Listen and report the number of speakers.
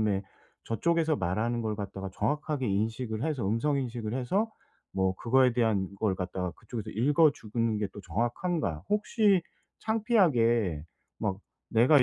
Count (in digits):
1